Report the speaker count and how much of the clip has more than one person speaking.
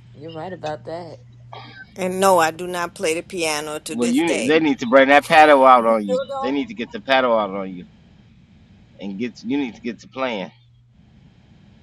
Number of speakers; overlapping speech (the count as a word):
three, about 12%